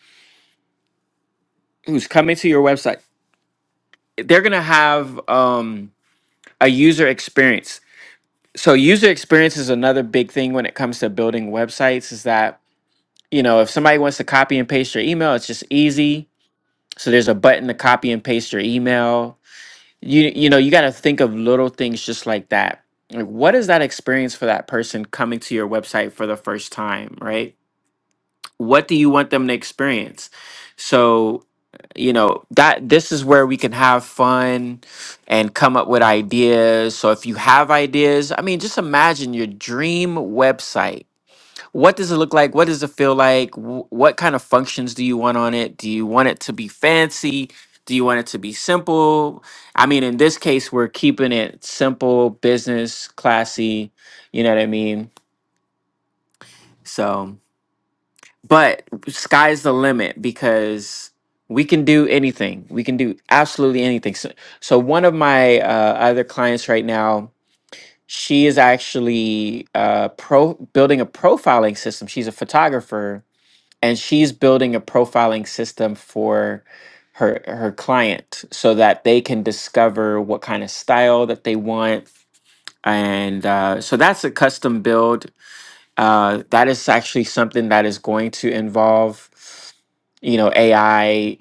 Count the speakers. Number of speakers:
1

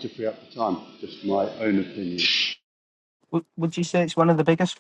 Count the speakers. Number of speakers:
2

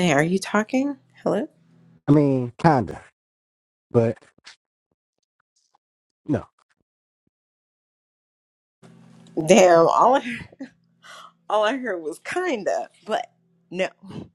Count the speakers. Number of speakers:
2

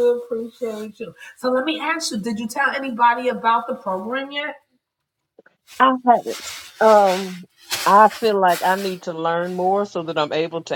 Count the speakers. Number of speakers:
2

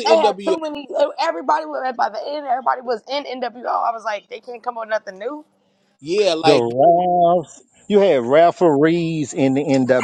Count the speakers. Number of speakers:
3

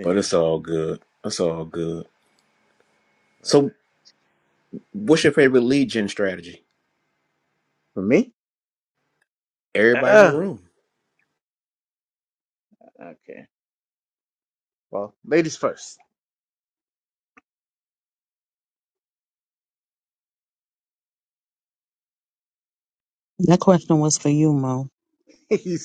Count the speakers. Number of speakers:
3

